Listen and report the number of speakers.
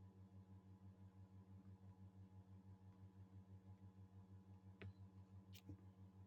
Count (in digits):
0